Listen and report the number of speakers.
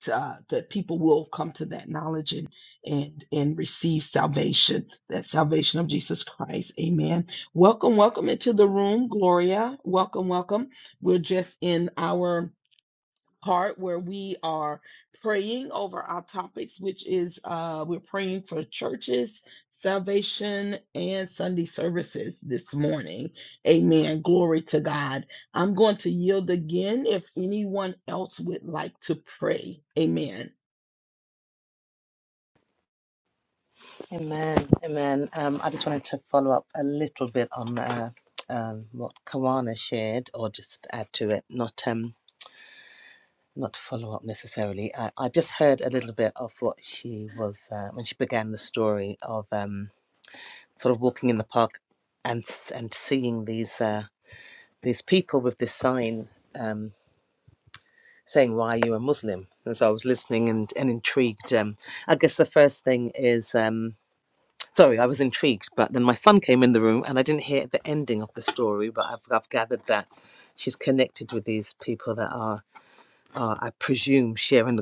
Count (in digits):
2